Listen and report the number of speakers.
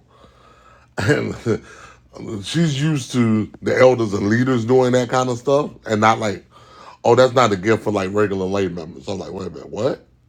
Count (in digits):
1